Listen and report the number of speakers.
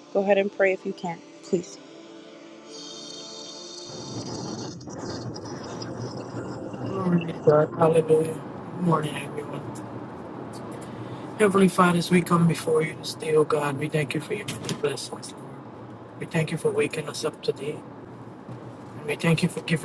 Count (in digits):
2